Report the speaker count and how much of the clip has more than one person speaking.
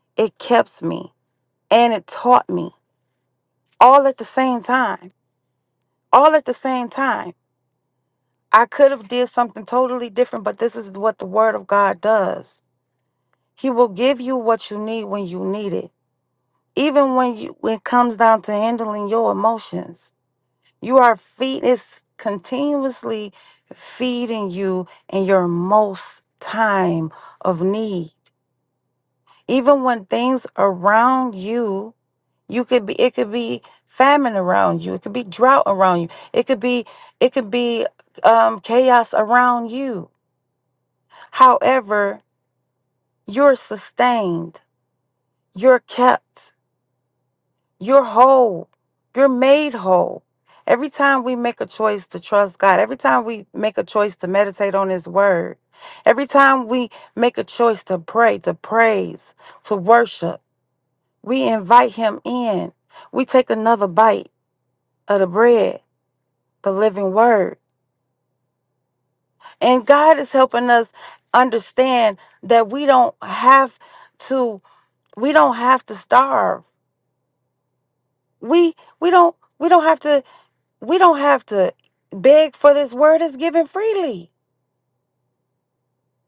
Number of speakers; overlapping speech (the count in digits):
1, no overlap